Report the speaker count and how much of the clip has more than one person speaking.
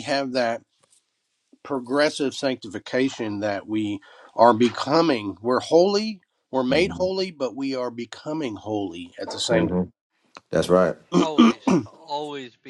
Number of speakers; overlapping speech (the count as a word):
three, about 4%